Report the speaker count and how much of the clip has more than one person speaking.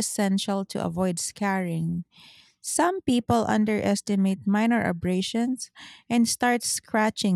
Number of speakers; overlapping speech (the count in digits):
1, no overlap